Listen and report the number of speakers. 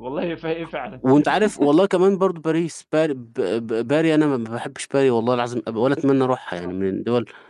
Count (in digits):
2